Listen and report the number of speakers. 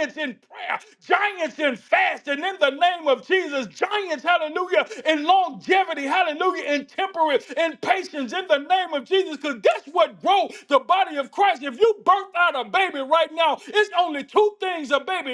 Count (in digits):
1